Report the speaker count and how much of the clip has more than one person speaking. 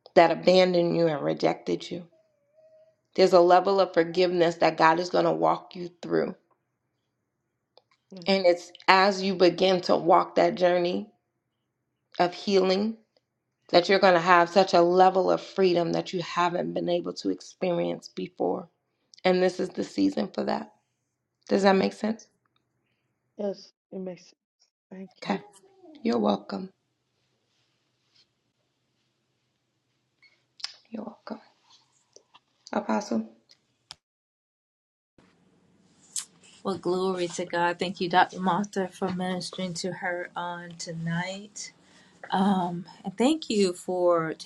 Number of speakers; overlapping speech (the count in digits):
3, under 1%